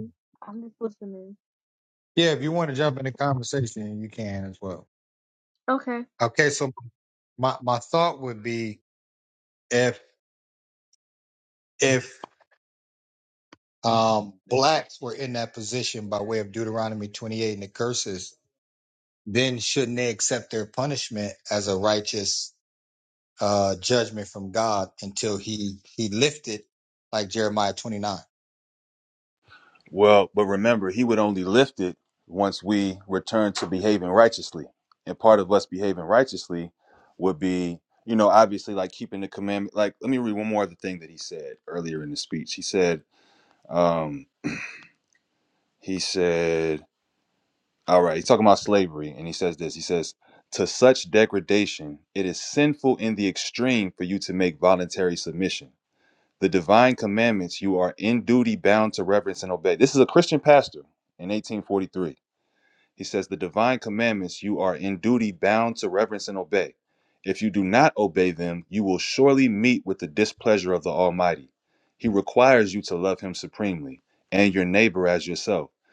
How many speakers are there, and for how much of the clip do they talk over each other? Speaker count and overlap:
3, no overlap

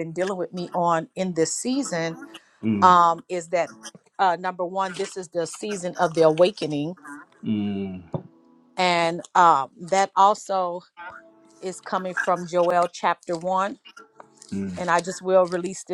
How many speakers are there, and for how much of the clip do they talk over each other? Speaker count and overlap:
2, about 1%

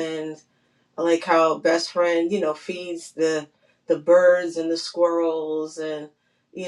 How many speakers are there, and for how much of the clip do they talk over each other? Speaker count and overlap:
1, no overlap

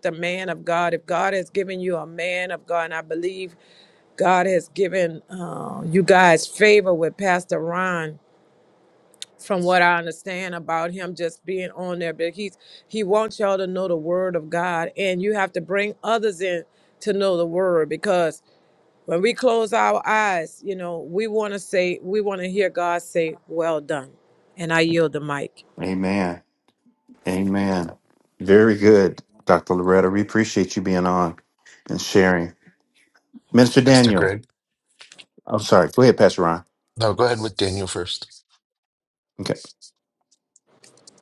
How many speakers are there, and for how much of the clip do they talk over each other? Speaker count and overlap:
3, about 1%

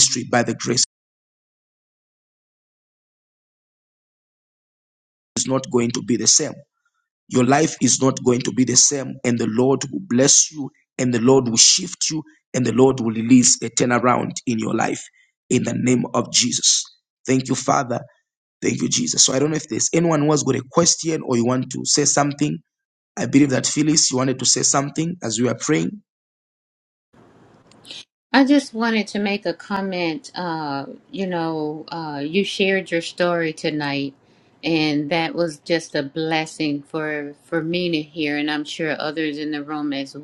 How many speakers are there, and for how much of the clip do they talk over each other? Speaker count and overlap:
2, no overlap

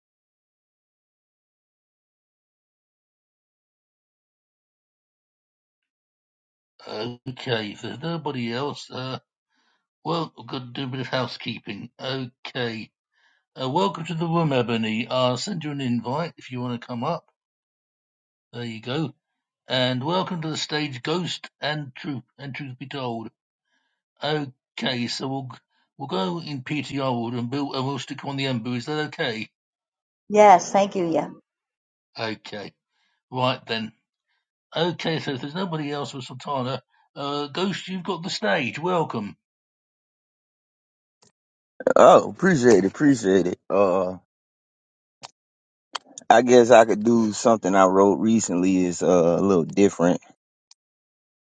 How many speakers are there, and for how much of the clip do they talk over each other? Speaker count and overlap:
3, no overlap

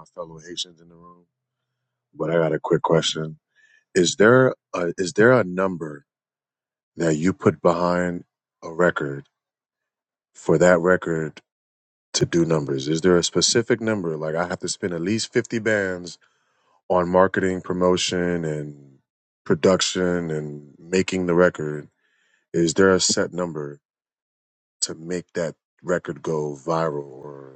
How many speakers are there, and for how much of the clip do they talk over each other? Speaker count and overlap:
1, no overlap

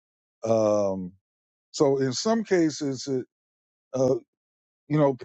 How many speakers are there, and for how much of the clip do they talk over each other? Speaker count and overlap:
1, no overlap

